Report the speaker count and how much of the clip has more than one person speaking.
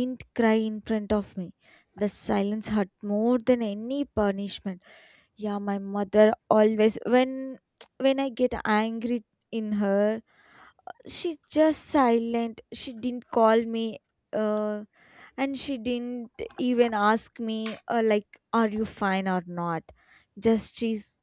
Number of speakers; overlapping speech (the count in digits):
1, no overlap